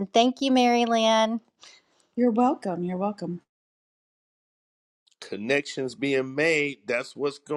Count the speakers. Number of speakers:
three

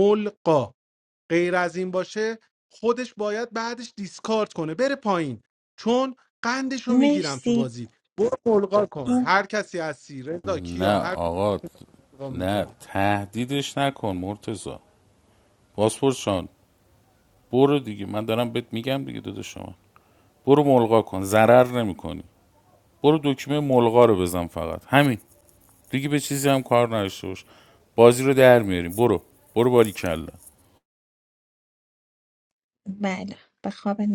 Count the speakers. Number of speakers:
three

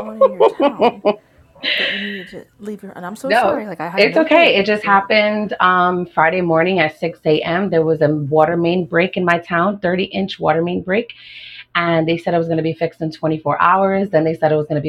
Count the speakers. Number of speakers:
two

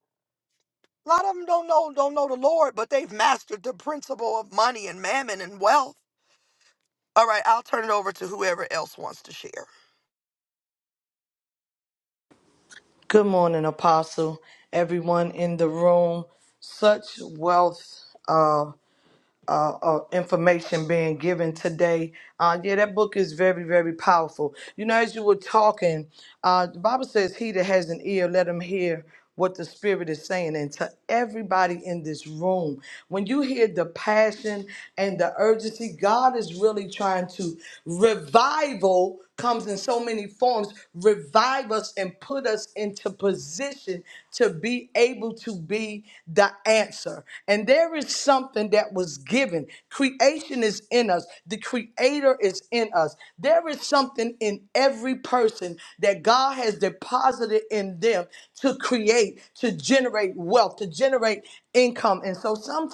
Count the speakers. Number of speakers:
two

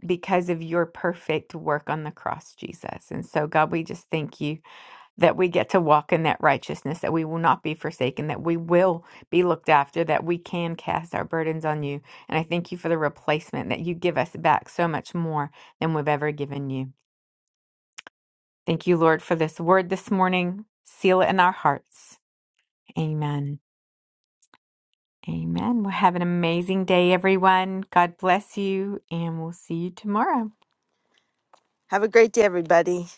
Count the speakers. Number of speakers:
two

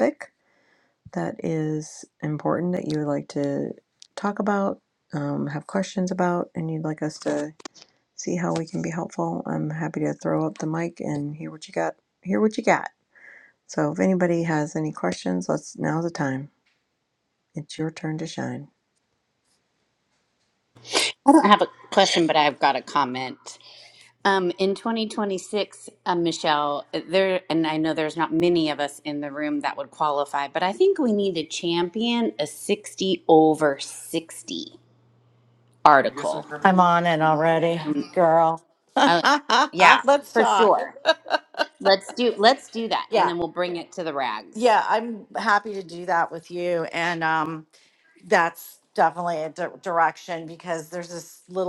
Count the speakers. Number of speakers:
three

